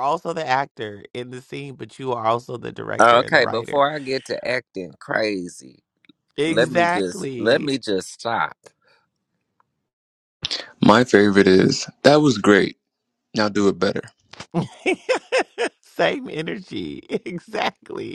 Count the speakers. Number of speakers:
3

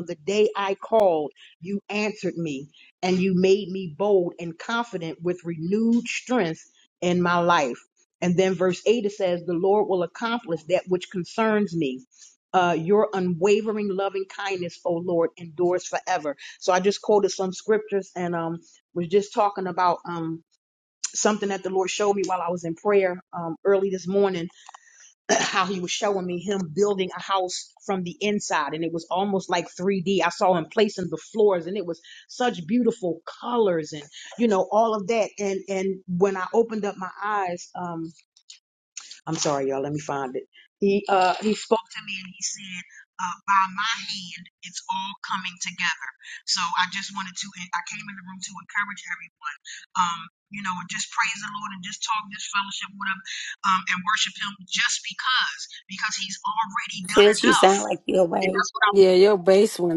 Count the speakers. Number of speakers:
3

